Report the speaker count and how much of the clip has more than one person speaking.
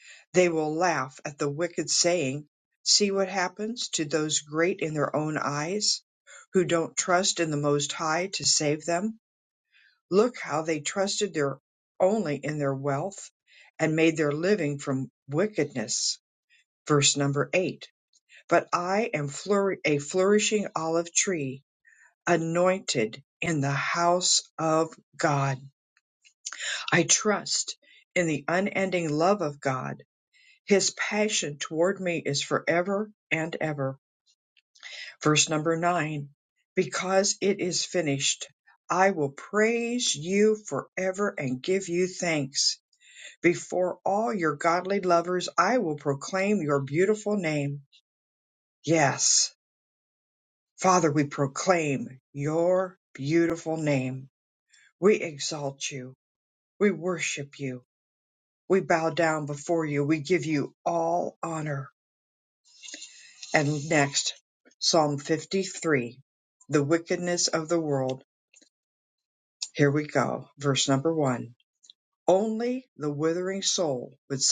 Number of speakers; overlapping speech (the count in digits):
1, no overlap